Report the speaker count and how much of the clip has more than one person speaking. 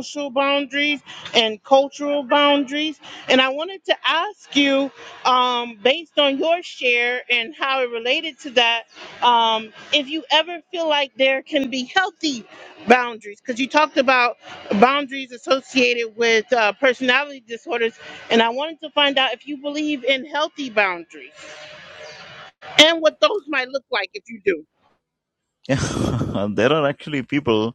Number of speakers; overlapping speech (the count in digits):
2, no overlap